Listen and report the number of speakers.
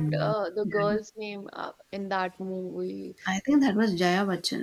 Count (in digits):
2